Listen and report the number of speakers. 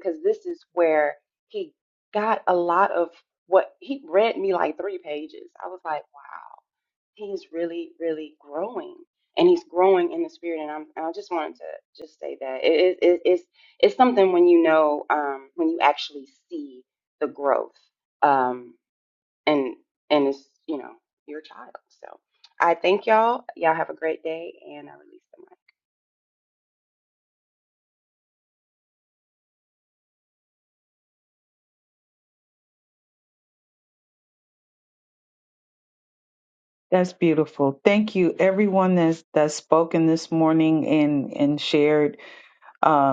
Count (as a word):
two